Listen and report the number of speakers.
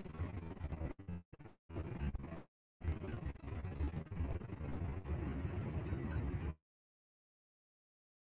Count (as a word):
zero